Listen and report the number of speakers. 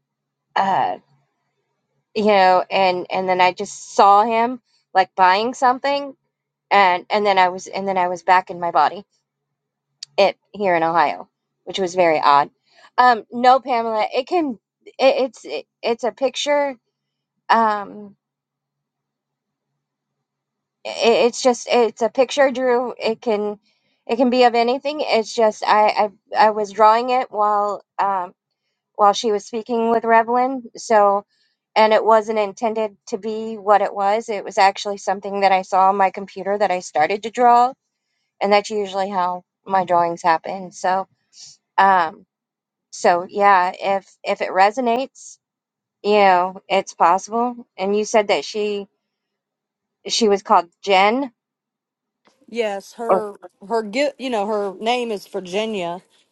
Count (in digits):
2